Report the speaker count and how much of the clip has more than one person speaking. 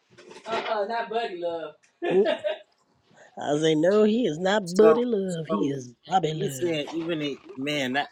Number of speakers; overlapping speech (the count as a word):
three, about 11%